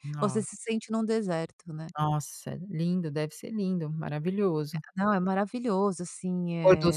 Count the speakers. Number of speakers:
two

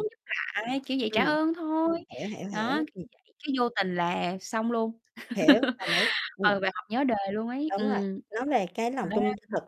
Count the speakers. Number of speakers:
two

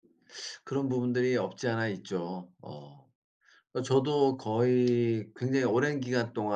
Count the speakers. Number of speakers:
one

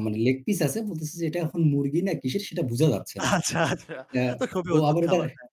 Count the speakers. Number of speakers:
two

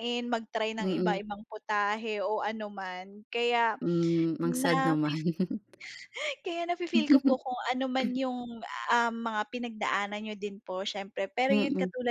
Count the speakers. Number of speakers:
two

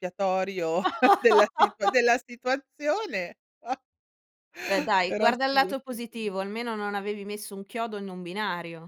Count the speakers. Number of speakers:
two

